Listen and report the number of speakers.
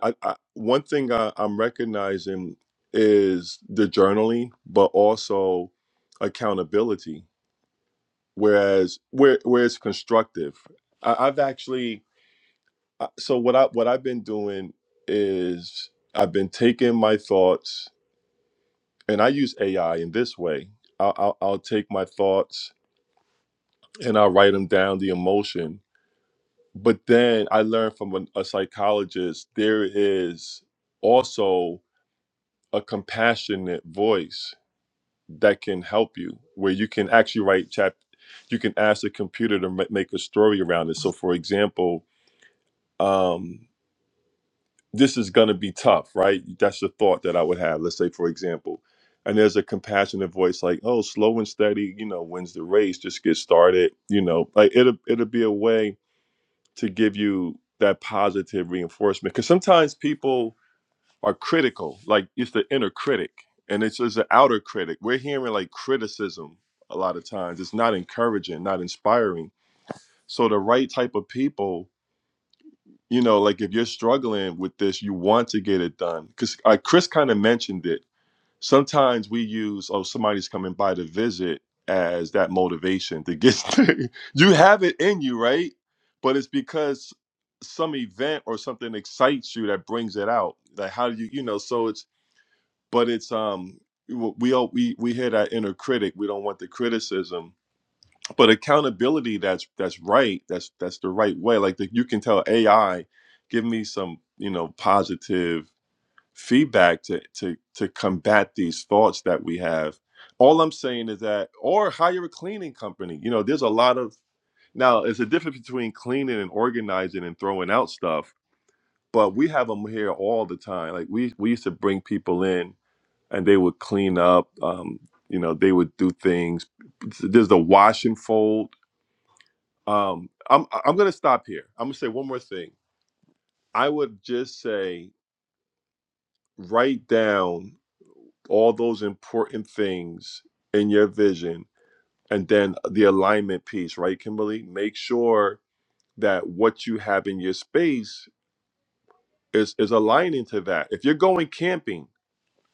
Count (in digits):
1